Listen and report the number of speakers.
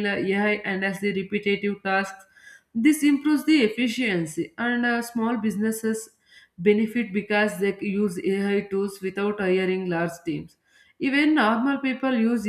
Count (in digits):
1